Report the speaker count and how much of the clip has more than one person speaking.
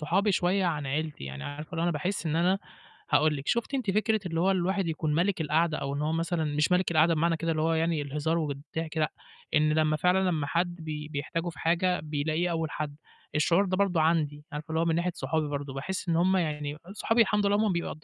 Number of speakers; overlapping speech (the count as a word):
one, no overlap